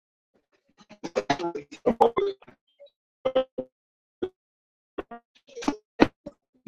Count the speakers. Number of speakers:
0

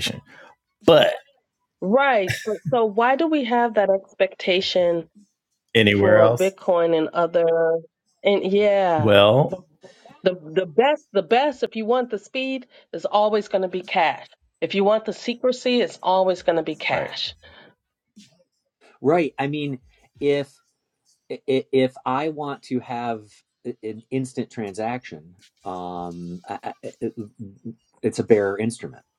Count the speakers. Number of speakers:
3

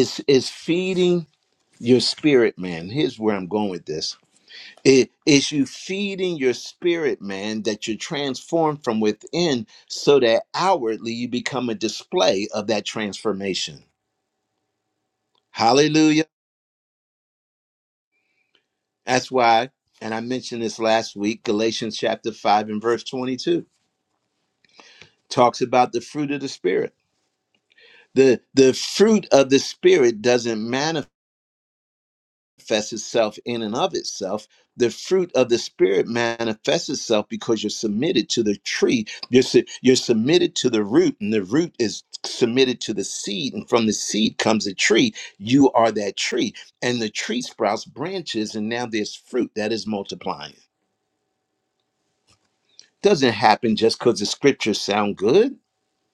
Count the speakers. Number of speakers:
1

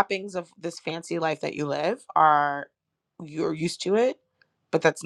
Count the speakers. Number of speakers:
1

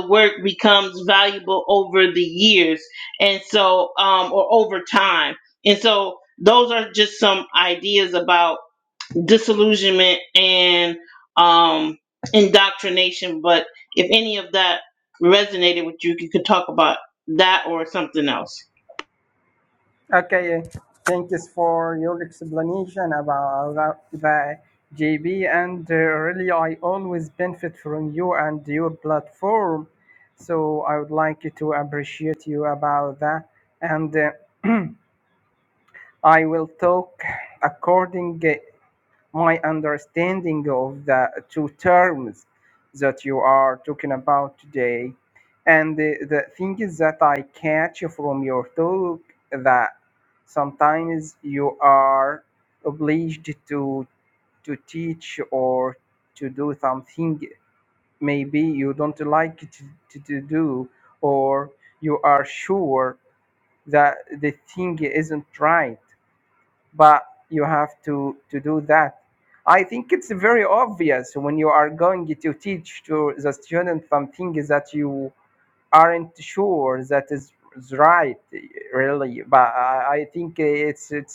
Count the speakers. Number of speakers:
2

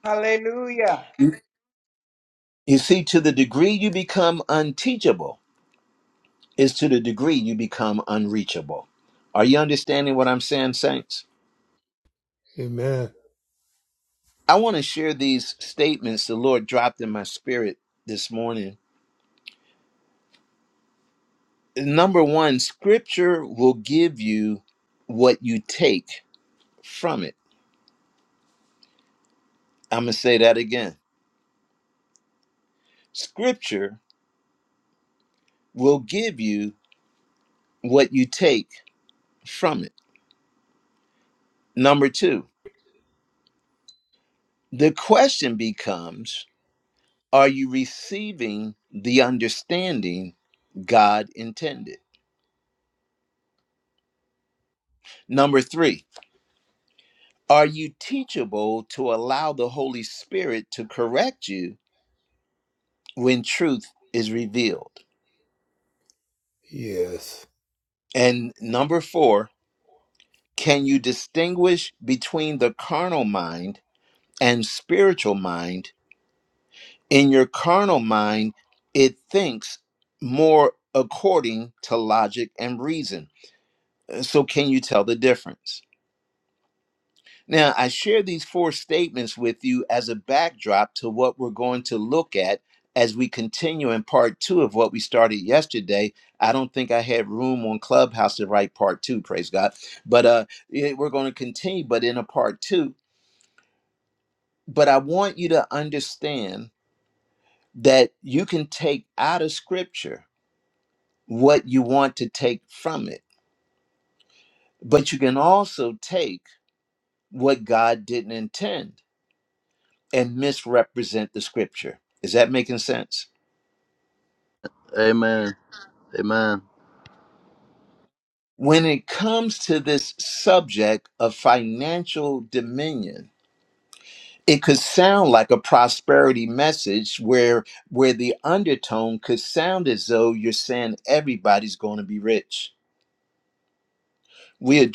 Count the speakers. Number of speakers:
4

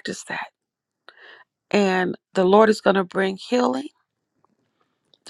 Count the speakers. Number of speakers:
1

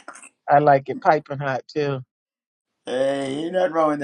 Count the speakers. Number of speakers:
2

